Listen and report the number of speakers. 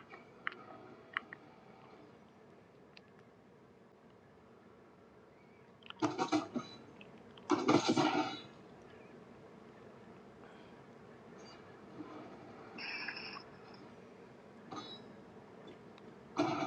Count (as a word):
zero